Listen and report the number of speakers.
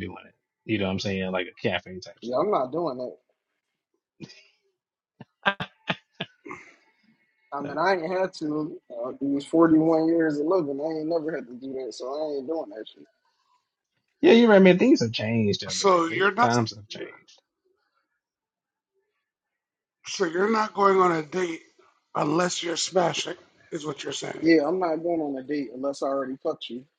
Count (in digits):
3